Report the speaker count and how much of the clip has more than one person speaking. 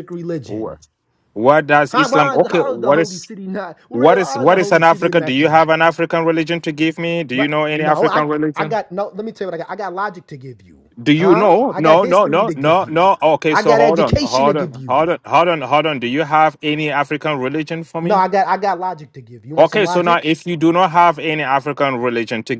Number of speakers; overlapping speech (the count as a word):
two, about 38%